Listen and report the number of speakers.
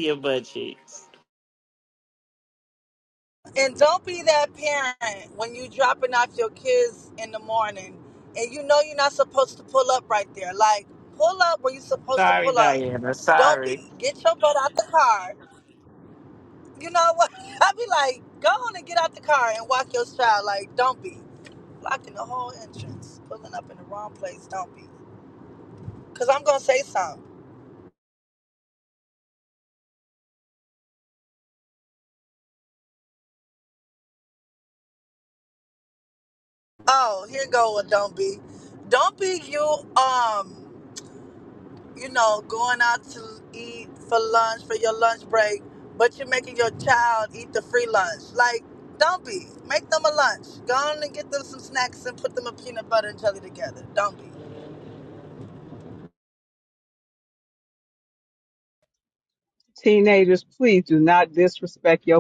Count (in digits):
3